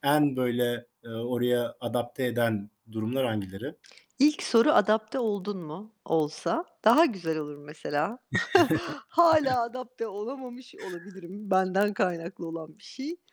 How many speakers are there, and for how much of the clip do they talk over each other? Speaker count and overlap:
2, no overlap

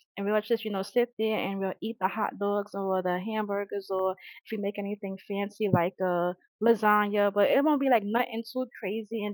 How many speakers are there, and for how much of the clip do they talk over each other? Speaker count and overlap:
1, no overlap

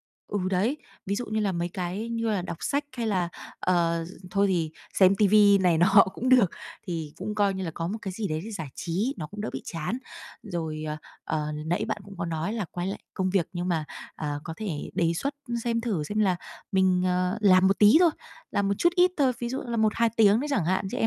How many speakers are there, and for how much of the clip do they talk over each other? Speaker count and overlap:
1, no overlap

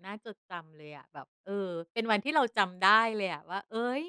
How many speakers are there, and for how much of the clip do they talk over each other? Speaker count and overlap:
1, no overlap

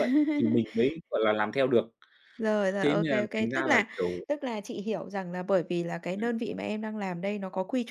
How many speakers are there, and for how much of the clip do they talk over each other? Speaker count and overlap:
2, about 15%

